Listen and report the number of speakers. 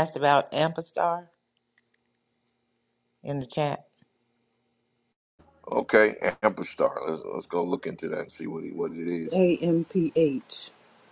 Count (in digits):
3